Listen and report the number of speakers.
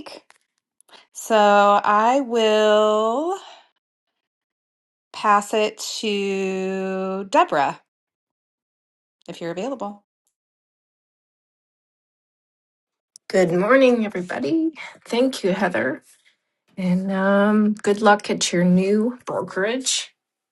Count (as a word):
two